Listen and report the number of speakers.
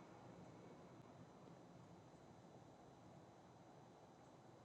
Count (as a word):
zero